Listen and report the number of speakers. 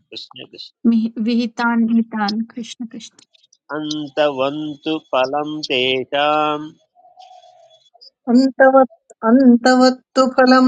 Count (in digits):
3